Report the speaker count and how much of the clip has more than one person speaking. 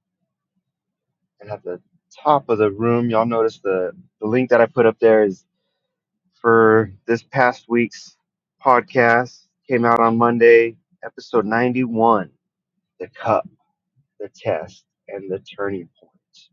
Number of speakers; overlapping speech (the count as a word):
one, no overlap